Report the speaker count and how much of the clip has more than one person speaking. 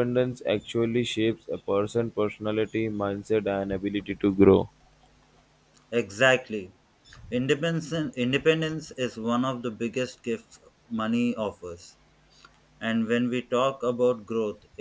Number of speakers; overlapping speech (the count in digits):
2, no overlap